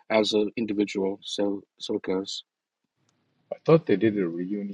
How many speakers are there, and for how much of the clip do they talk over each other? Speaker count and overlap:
2, no overlap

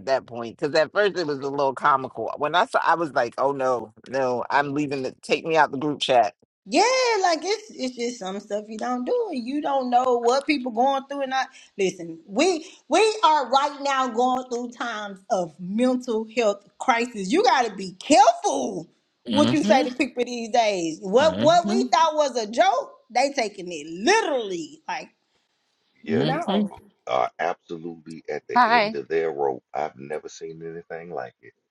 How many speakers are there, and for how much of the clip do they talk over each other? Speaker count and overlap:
3, about 7%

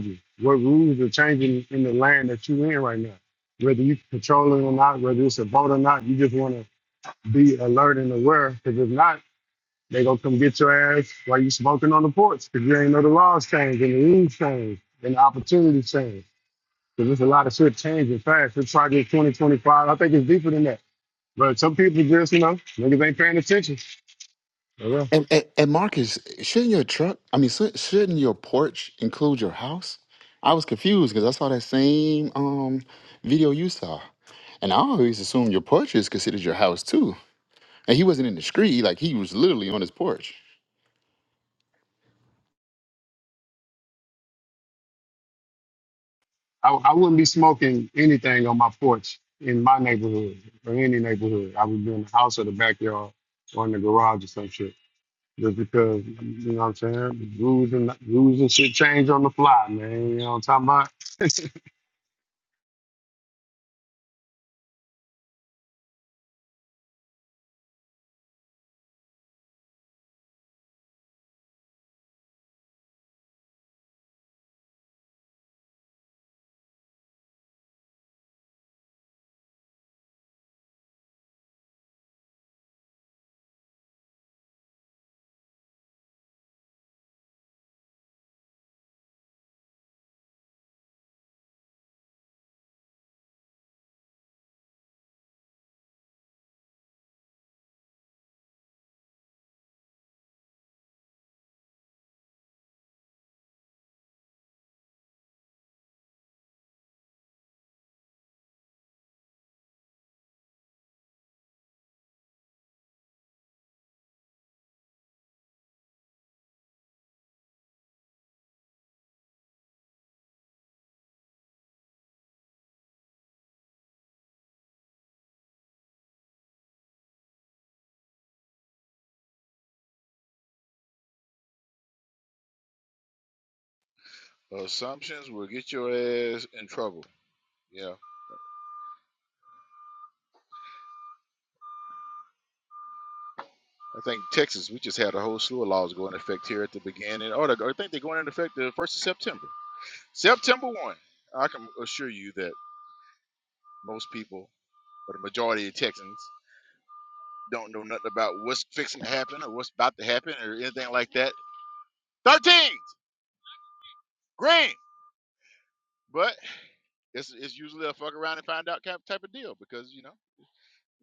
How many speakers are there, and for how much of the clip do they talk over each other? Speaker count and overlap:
3, no overlap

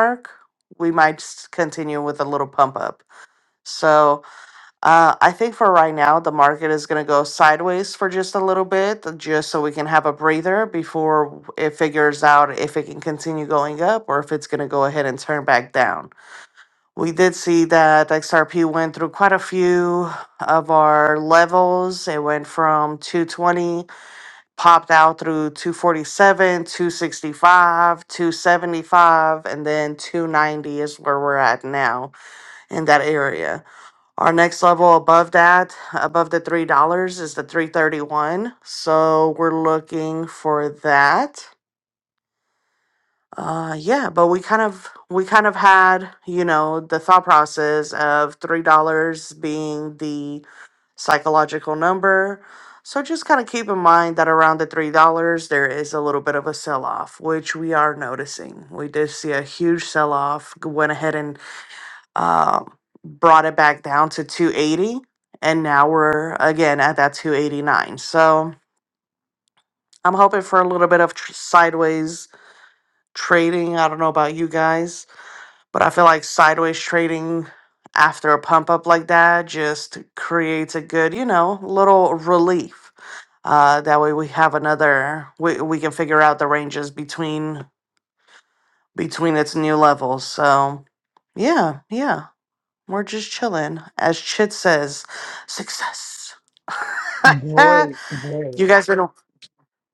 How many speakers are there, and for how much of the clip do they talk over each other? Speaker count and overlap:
2, about 1%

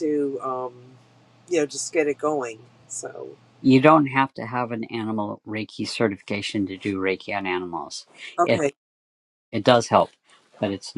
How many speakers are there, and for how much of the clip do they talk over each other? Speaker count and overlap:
2, about 2%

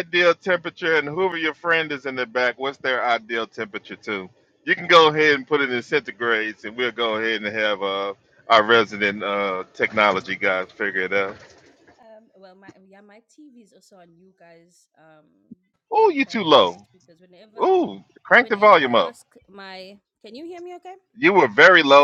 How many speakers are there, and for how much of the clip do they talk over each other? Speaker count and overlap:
2, about 7%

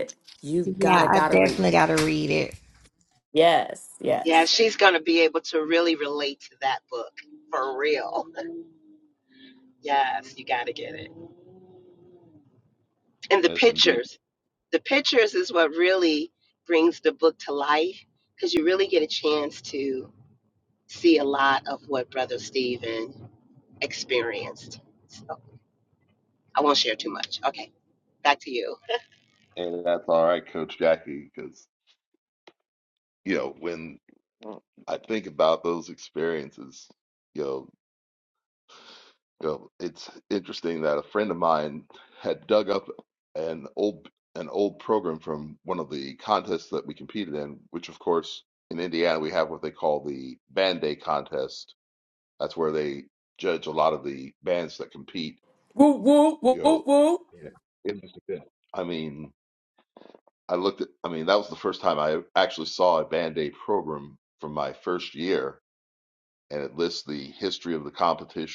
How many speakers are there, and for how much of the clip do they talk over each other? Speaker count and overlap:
4, about 3%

